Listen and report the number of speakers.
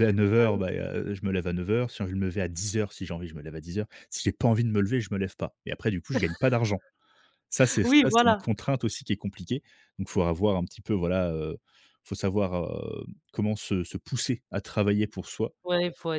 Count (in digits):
2